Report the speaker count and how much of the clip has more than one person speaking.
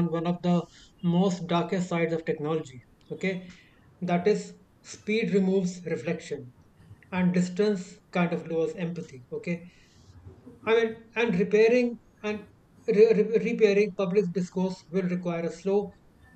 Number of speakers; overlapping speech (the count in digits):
1, no overlap